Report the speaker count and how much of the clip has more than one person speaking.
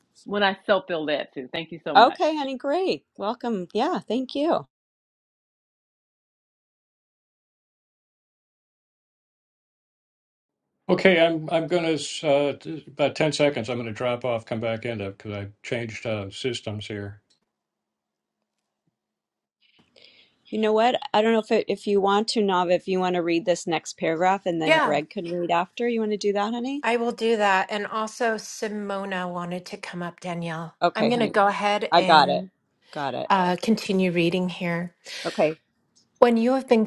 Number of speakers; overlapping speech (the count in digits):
4, about 4%